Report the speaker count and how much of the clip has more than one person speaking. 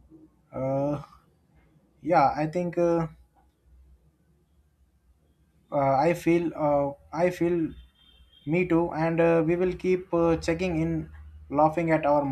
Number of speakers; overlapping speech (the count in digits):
1, no overlap